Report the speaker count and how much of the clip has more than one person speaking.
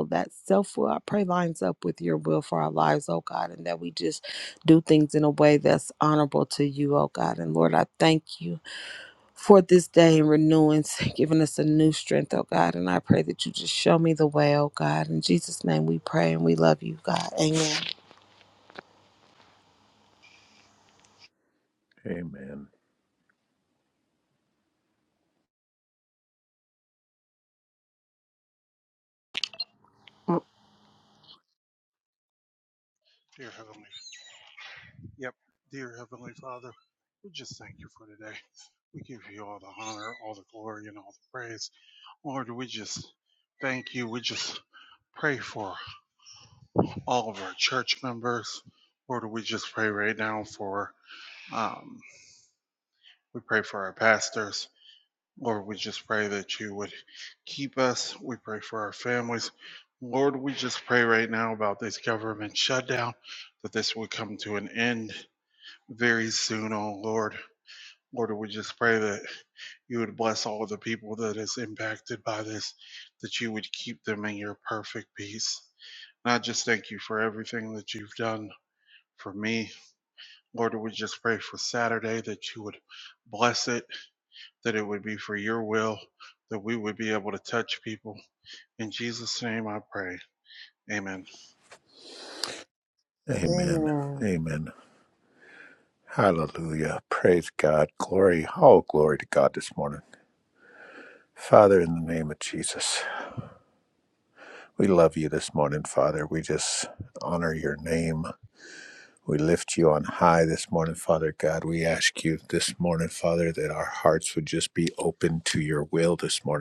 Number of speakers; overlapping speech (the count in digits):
3, about 1%